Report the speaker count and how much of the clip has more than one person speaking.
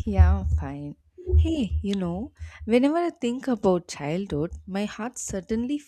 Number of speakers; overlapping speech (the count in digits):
1, no overlap